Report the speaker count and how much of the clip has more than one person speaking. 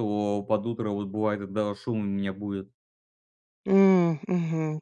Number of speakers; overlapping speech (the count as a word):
two, no overlap